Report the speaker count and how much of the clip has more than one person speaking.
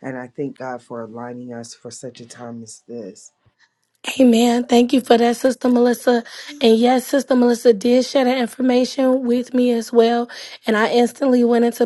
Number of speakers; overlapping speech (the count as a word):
two, no overlap